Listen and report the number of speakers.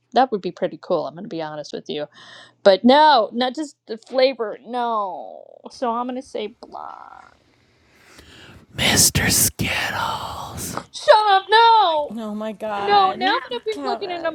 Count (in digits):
3